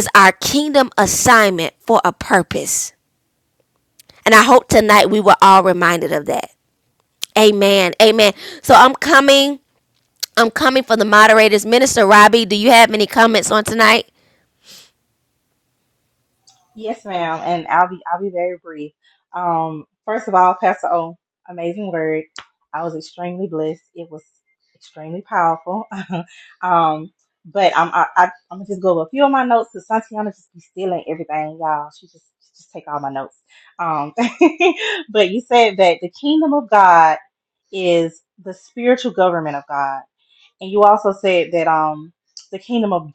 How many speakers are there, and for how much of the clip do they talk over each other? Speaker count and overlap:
2, no overlap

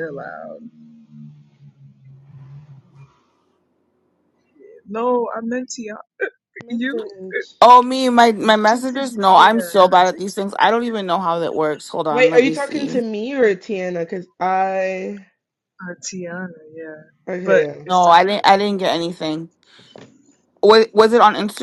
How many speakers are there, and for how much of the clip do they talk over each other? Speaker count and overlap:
3, about 12%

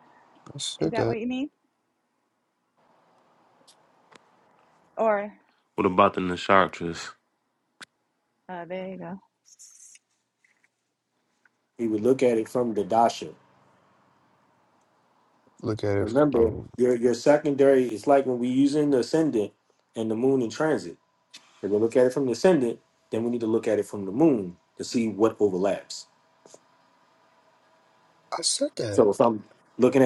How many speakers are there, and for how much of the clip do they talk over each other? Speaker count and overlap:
4, about 4%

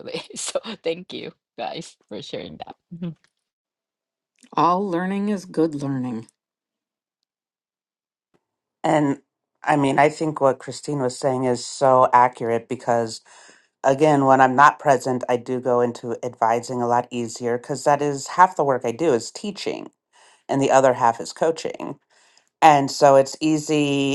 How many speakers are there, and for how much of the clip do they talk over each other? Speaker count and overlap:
3, no overlap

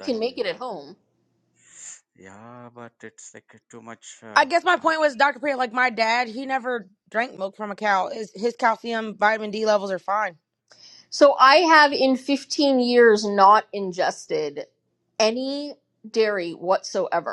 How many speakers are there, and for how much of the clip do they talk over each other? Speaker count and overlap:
3, about 6%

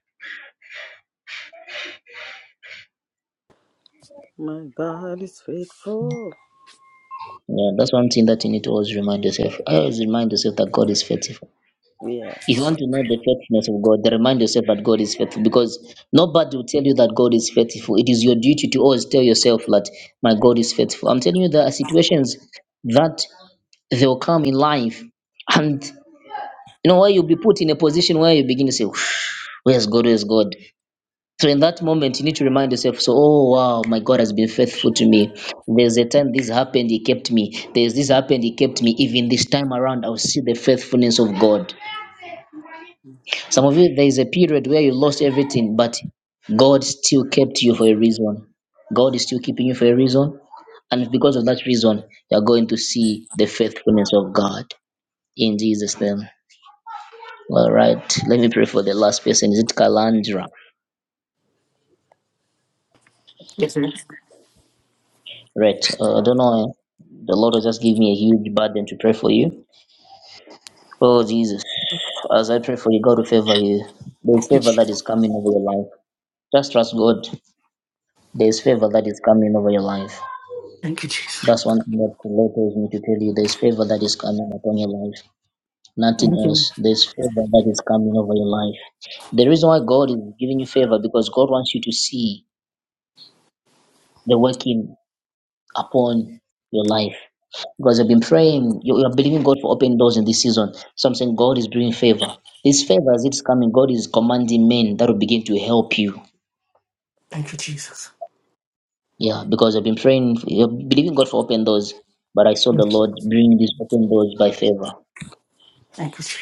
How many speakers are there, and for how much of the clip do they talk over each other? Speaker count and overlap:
3, about 2%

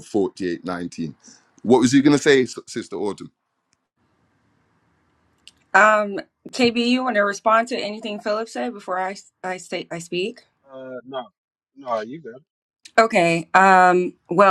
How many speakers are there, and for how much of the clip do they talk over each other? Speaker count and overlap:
3, no overlap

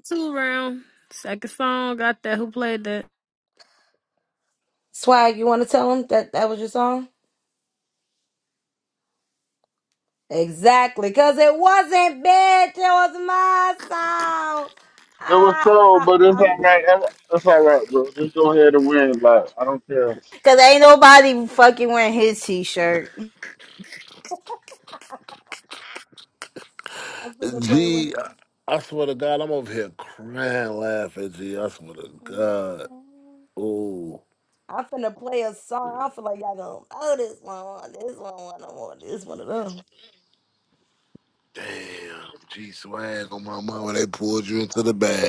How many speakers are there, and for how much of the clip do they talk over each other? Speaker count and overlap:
5, about 3%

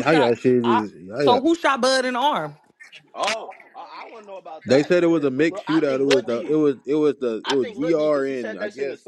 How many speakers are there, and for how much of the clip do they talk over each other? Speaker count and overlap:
3, about 50%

